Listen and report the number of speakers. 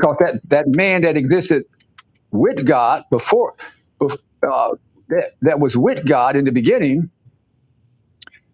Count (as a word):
one